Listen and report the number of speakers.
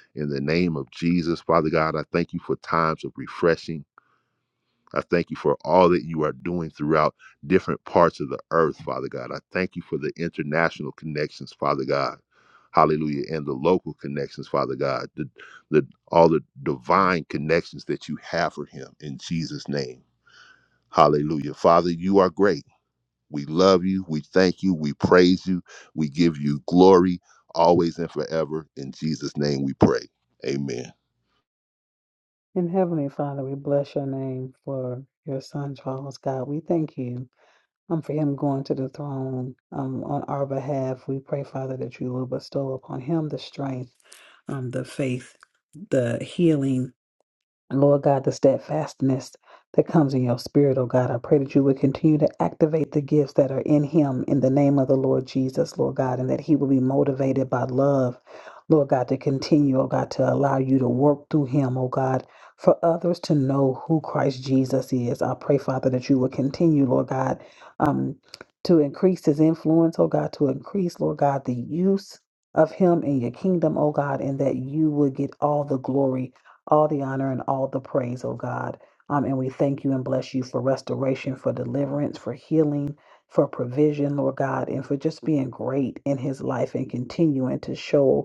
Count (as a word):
two